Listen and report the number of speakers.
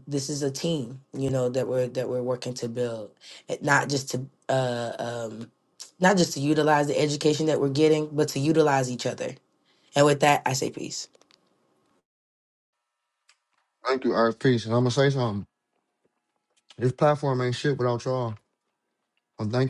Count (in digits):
2